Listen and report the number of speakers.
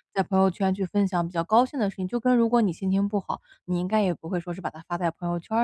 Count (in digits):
1